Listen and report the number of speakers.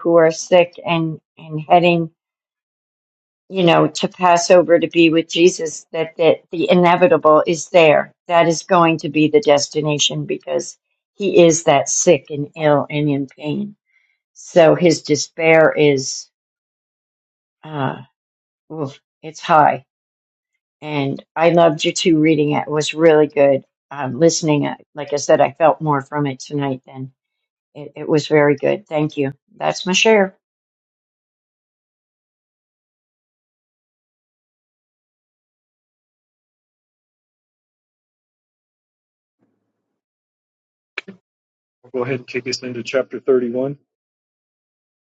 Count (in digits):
2